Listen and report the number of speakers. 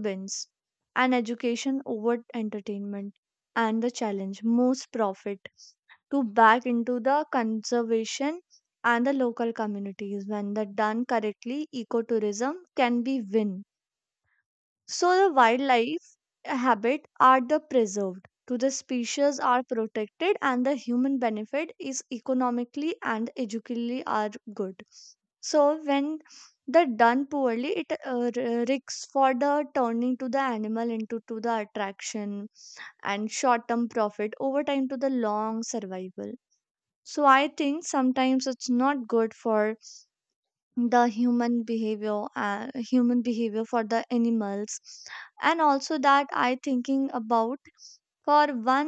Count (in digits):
1